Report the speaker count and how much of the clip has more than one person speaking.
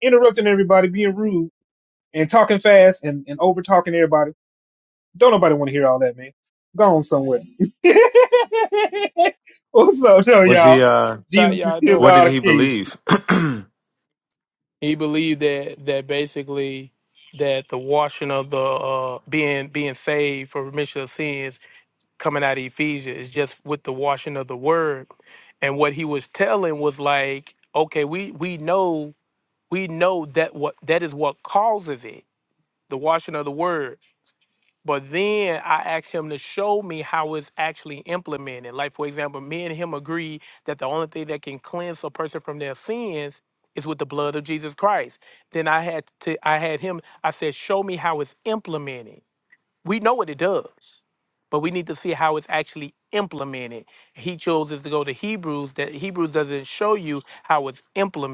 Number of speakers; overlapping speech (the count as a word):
three, about 3%